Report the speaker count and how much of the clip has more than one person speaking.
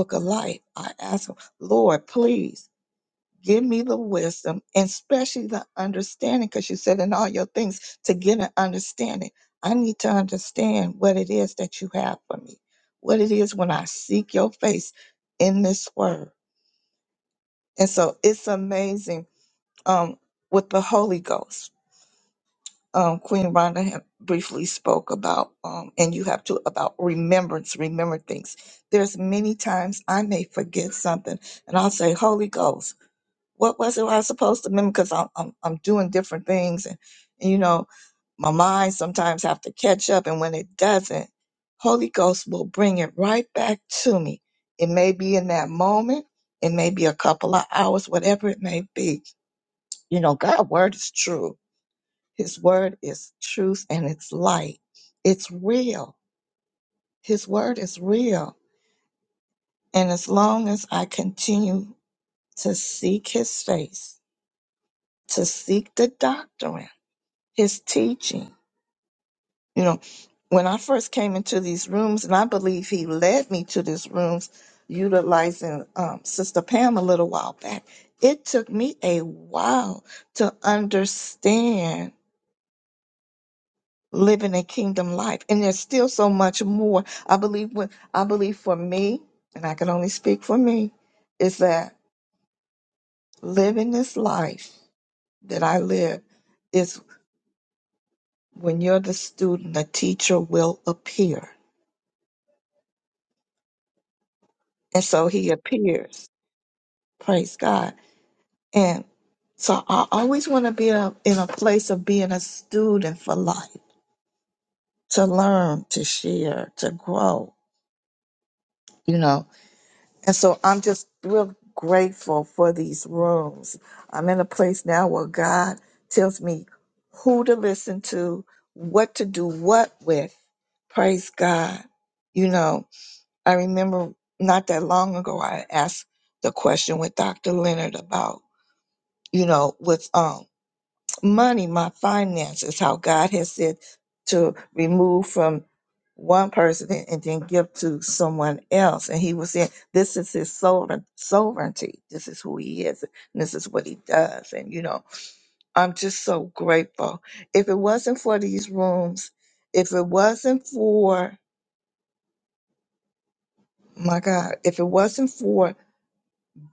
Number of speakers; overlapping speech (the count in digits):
1, no overlap